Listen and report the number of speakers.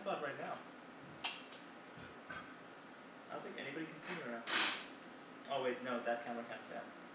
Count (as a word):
one